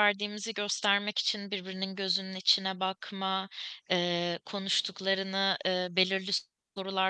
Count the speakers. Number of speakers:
1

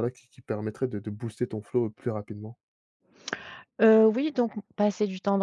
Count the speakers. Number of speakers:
2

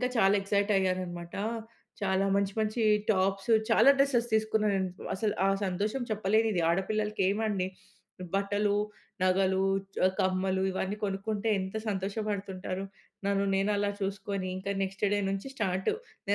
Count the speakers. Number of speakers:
1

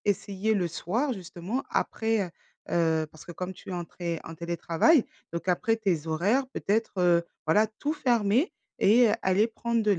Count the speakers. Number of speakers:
1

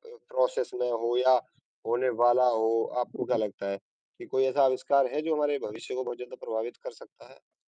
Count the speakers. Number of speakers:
1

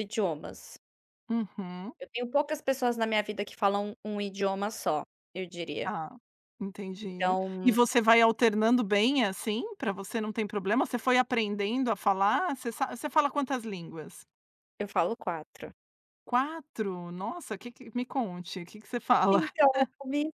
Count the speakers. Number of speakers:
2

